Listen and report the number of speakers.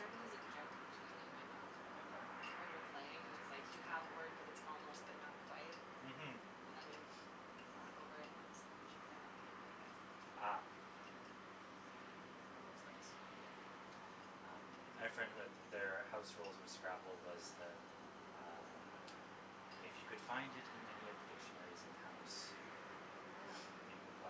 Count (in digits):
2